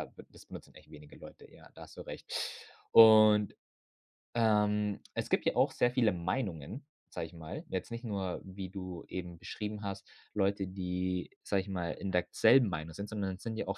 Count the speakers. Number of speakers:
1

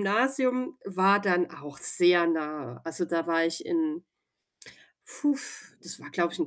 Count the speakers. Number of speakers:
1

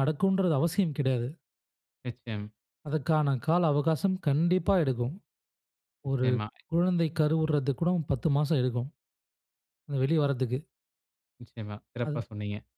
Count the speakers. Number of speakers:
2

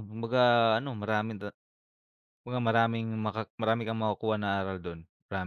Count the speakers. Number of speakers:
1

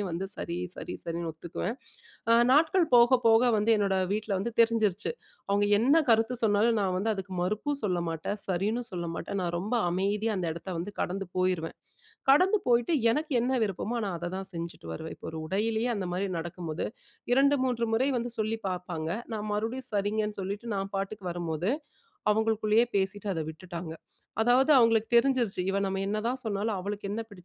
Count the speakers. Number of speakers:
1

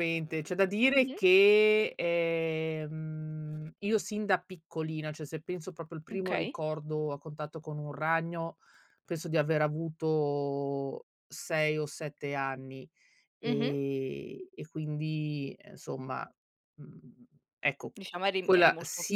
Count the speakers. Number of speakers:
2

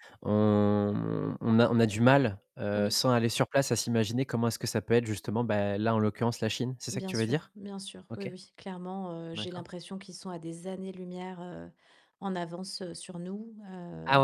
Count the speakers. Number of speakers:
2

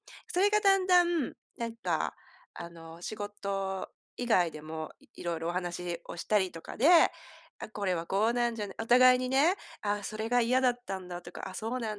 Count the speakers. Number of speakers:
1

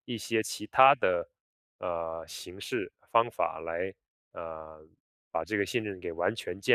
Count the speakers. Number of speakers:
1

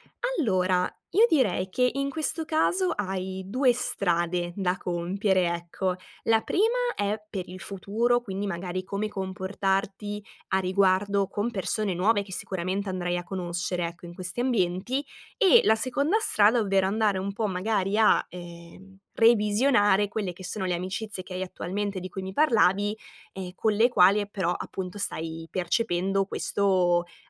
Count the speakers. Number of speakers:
1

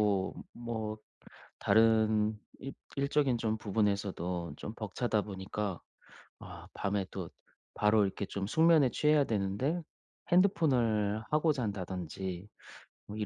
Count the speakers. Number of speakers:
1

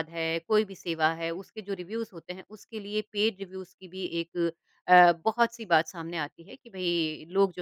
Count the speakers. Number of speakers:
1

